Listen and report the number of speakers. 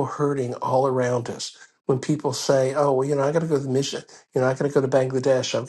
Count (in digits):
1